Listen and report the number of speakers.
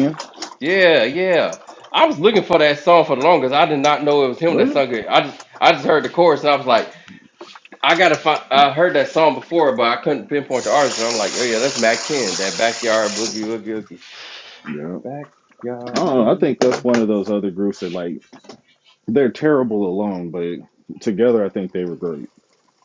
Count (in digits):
2